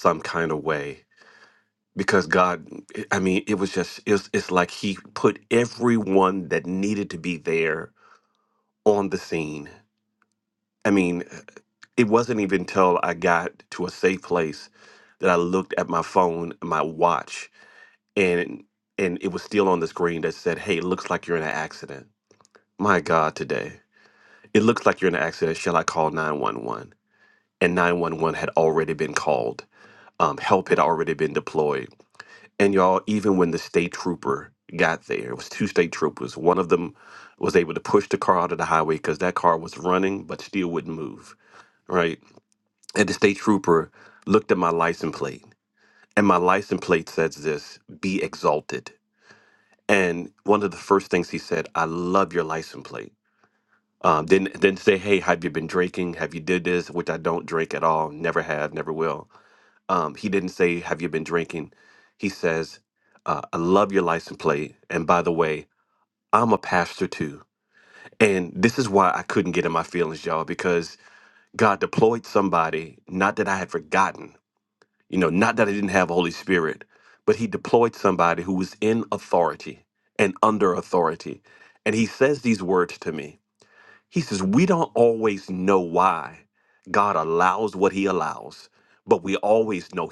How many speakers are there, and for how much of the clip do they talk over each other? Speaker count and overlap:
1, no overlap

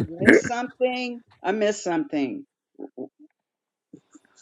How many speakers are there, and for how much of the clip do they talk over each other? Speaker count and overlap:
1, no overlap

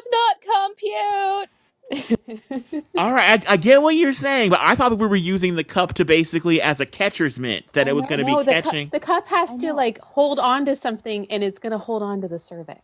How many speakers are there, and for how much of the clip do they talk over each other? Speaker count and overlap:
3, about 11%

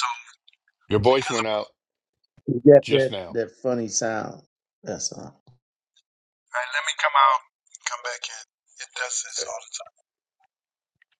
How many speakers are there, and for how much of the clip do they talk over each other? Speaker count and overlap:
3, about 6%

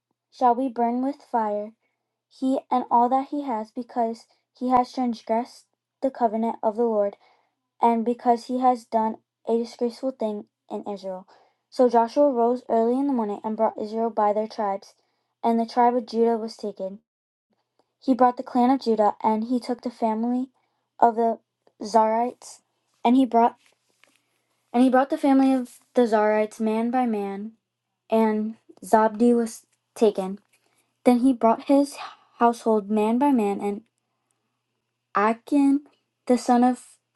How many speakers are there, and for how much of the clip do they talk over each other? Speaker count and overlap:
1, no overlap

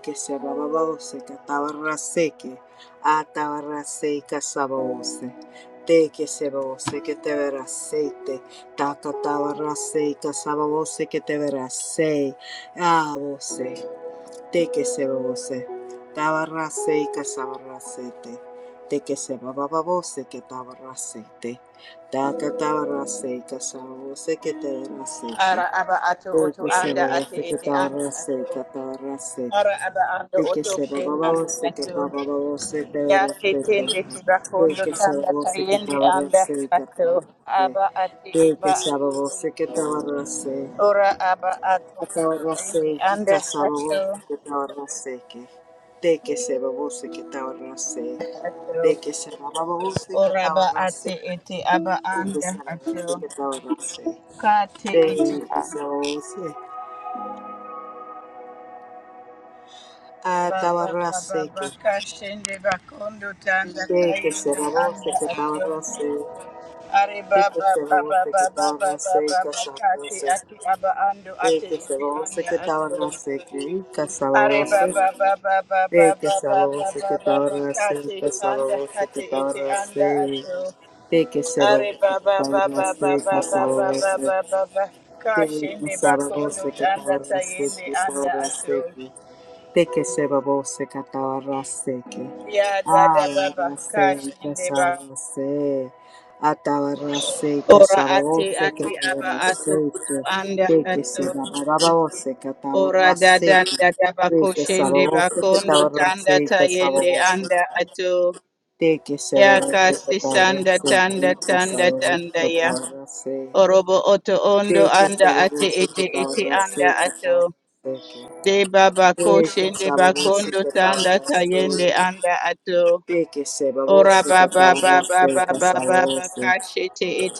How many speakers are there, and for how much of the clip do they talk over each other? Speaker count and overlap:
2, about 42%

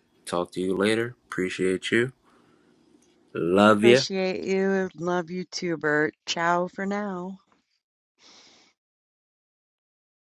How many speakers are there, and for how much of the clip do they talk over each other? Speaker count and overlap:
2, about 2%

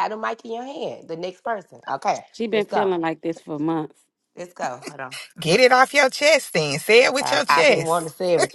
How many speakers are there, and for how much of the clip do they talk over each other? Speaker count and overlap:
3, about 14%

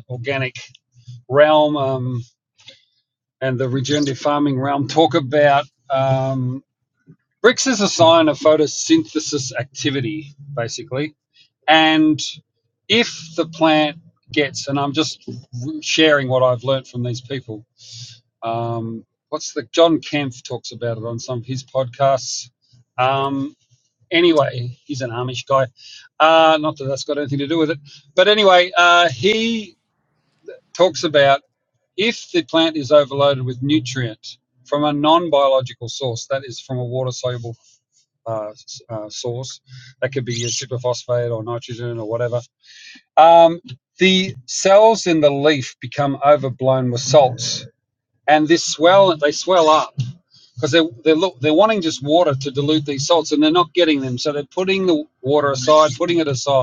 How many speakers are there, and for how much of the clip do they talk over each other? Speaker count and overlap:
1, no overlap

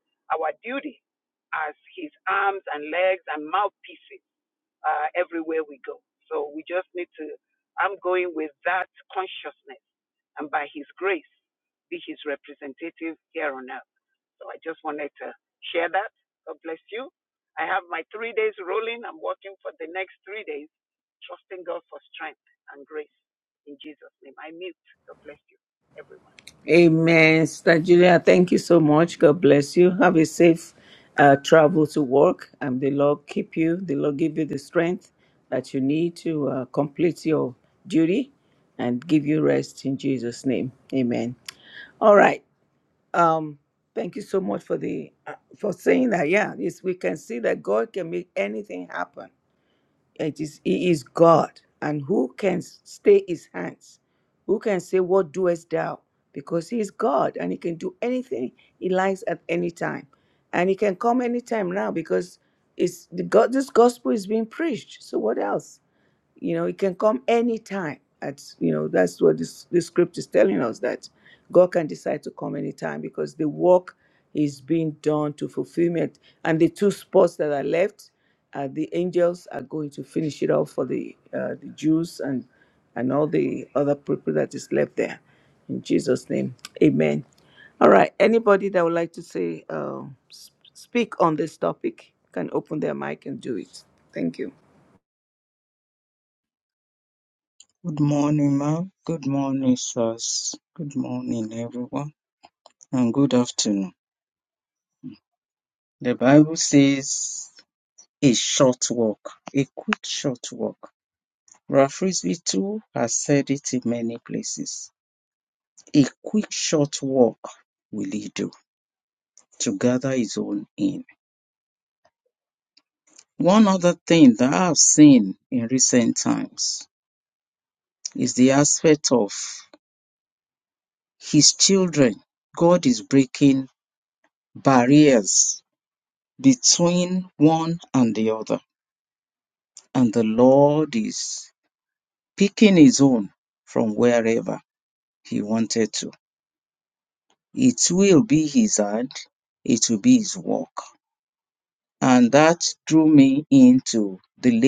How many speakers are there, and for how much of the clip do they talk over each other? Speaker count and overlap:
3, no overlap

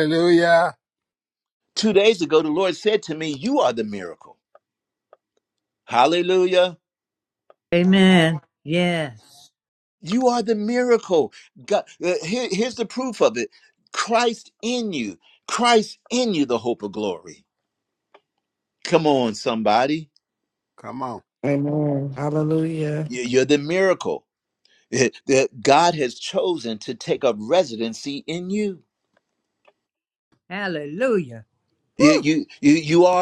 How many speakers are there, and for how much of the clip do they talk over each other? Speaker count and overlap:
4, about 1%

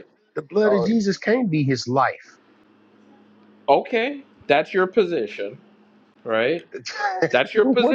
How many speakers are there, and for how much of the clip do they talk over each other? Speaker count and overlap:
2, about 9%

